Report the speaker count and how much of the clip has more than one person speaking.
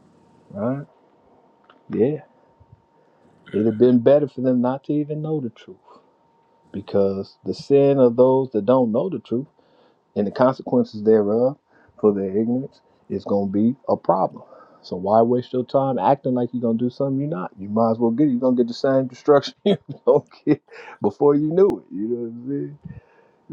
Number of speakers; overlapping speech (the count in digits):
1, no overlap